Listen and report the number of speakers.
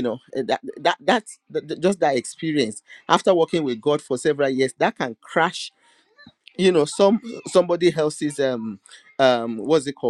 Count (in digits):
1